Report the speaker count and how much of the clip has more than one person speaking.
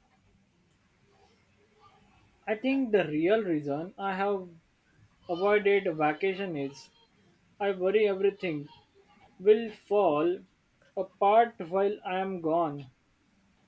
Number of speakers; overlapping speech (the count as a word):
one, no overlap